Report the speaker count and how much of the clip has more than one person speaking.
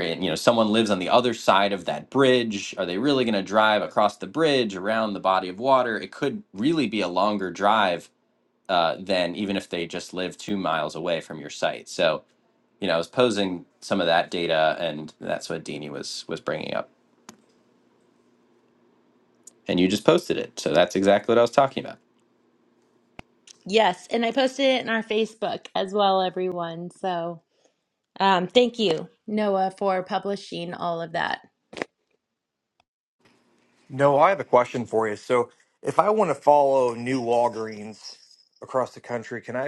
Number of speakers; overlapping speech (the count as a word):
three, no overlap